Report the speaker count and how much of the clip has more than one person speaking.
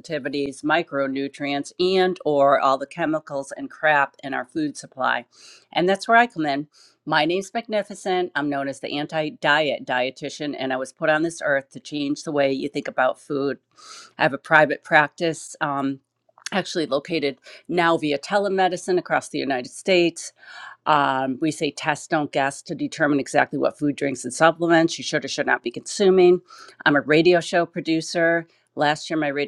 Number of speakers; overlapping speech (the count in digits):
1, no overlap